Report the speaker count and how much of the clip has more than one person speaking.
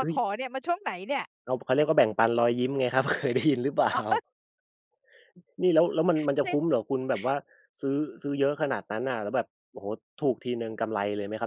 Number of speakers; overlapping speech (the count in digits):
2, about 3%